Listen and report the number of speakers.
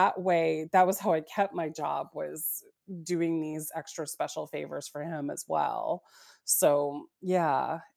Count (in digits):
1